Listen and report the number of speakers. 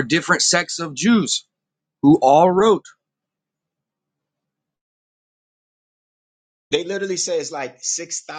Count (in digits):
2